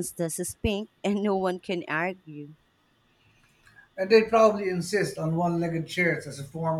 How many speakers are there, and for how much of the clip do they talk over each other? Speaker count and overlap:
2, no overlap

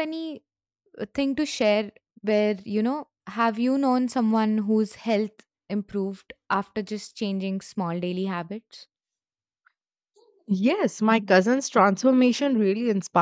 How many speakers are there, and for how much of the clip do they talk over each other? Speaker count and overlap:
2, no overlap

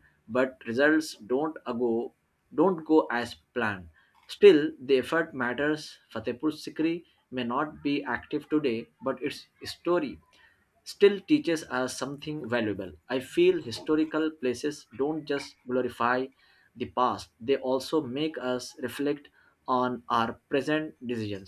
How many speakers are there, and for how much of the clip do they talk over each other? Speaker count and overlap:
1, no overlap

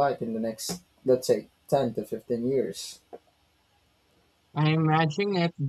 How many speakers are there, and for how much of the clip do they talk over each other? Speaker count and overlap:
2, no overlap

